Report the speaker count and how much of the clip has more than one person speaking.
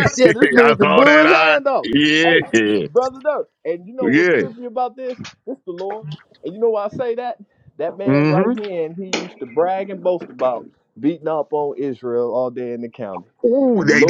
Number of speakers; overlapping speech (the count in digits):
2, about 20%